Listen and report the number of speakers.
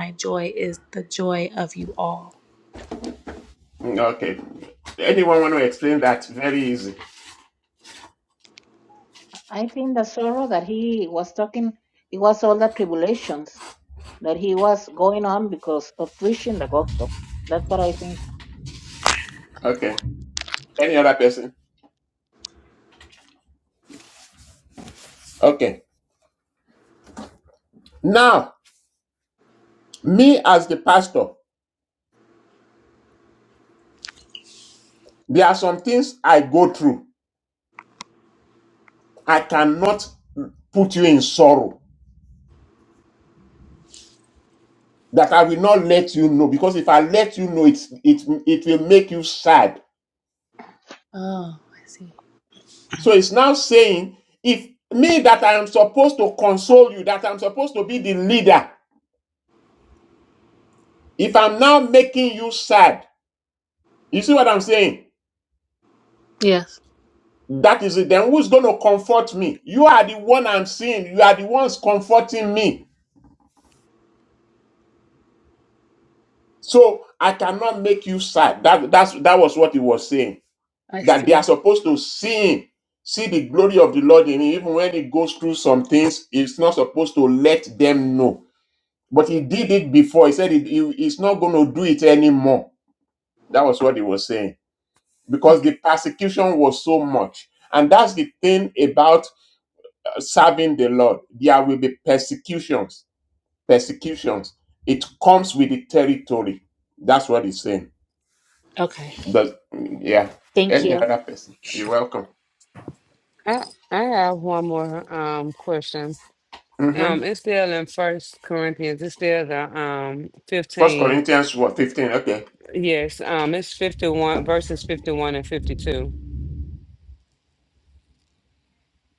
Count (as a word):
four